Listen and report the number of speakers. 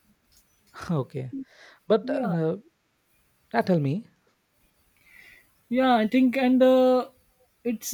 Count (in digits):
2